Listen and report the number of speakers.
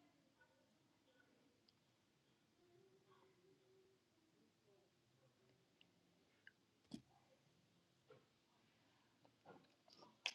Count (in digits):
0